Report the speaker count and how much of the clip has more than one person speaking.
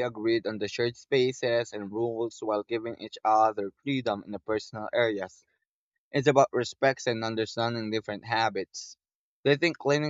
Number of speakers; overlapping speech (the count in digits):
1, no overlap